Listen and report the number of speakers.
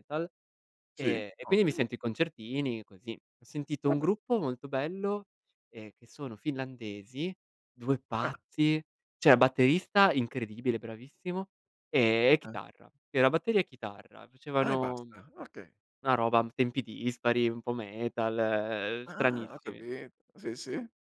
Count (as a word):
two